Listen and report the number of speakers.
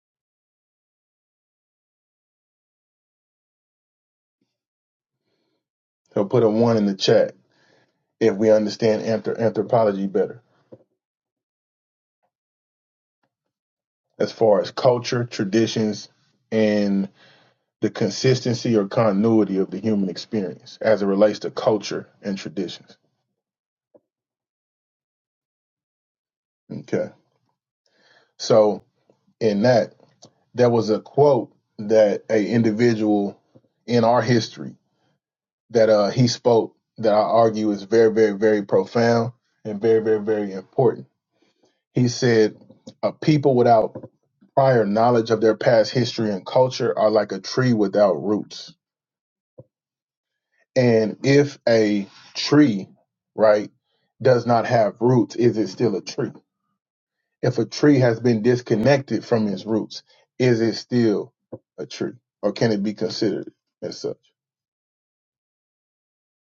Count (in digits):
1